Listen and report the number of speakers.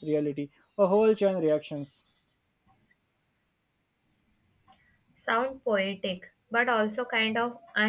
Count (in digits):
2